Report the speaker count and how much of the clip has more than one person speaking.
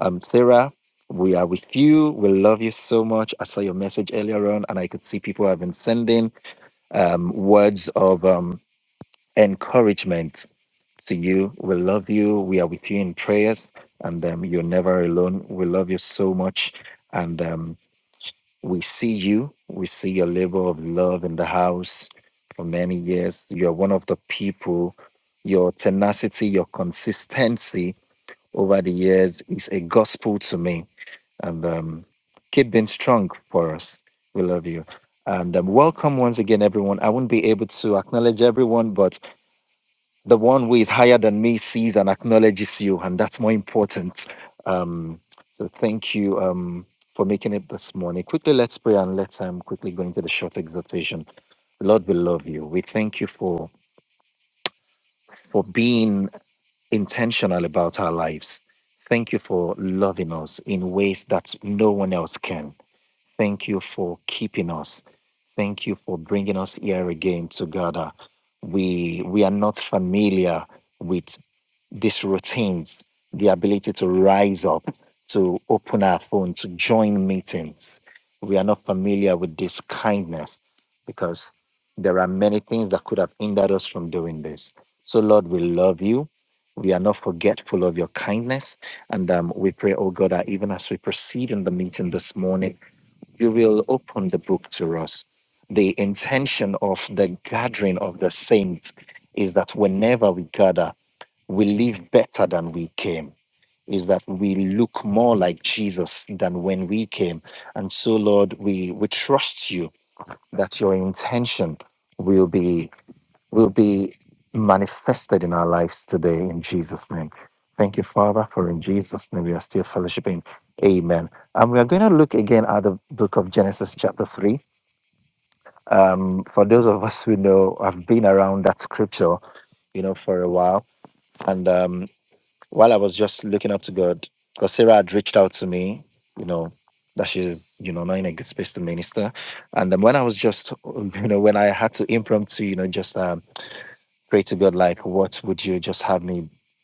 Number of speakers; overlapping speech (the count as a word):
one, no overlap